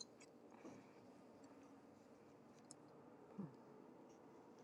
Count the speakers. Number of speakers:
zero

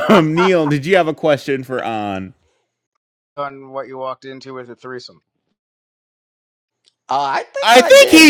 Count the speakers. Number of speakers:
three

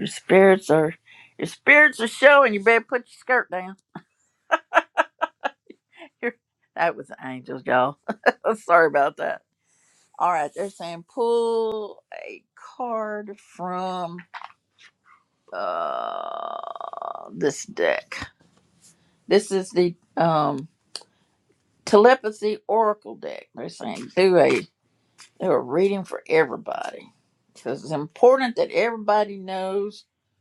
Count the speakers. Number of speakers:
one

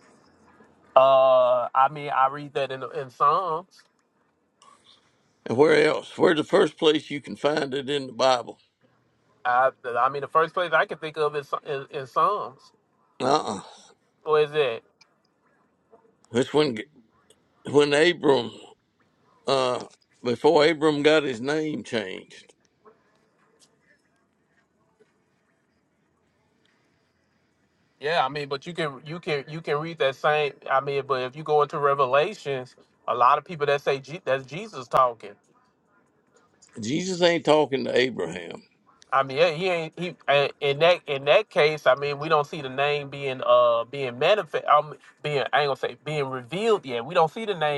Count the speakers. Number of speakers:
two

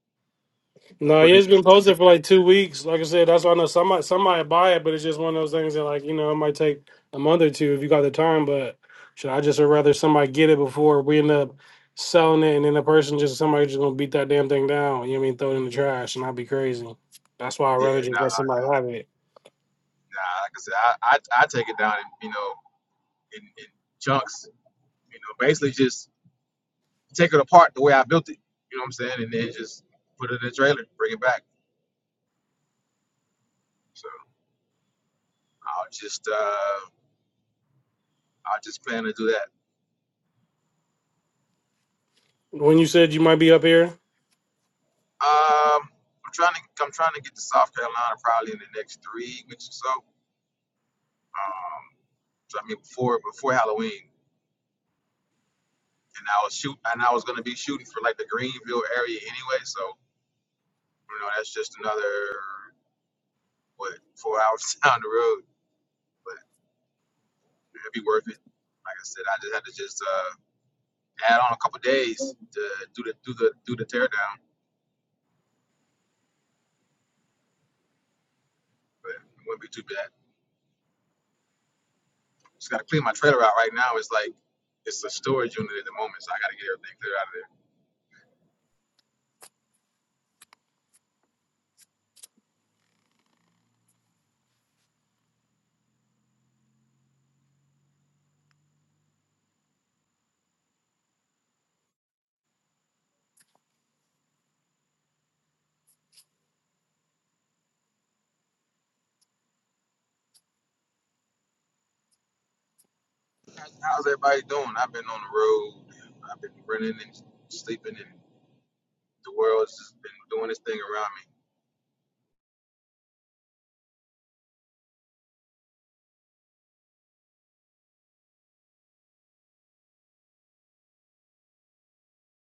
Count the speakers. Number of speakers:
two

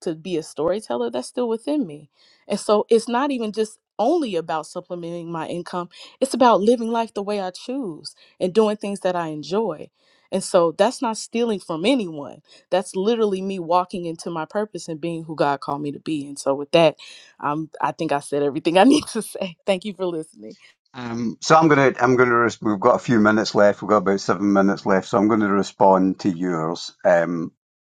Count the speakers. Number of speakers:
two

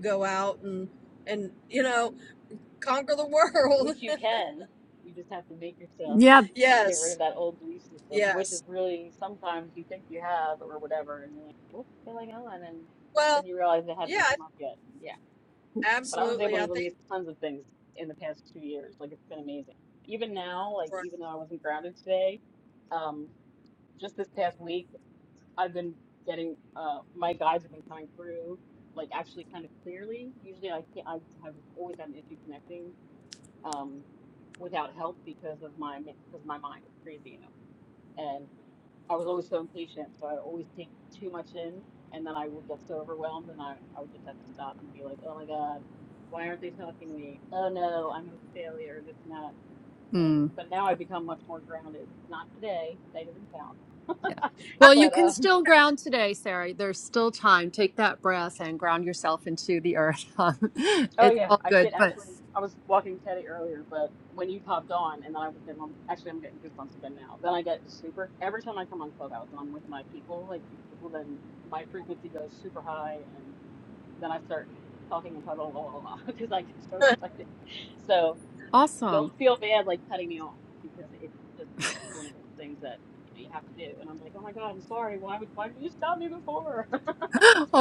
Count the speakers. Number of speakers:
three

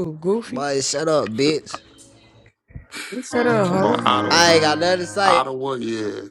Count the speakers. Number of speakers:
three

